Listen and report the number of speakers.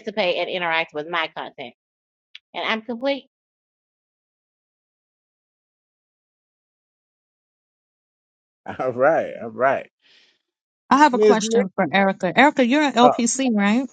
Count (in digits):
3